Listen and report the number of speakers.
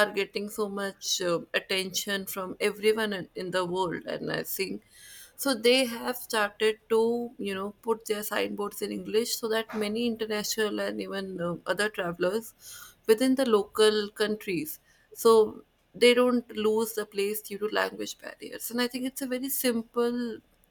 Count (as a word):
one